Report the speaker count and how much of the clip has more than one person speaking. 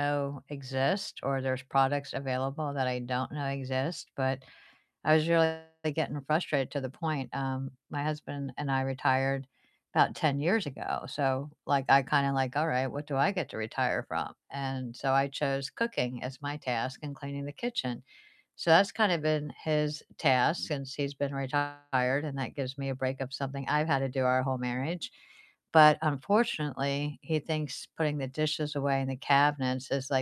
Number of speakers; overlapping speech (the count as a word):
one, no overlap